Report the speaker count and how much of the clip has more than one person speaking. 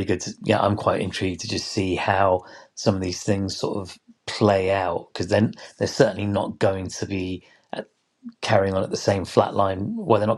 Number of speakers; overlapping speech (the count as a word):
one, no overlap